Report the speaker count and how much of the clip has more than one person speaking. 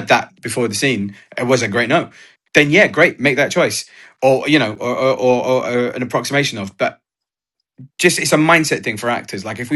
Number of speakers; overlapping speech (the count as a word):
one, no overlap